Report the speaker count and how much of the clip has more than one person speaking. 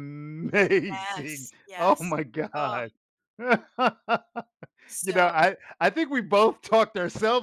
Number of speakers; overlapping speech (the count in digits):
2, about 10%